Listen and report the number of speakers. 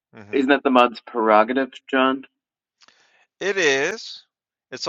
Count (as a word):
two